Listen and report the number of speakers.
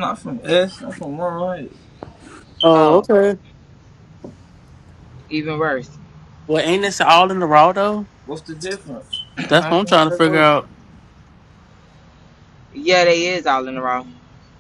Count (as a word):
three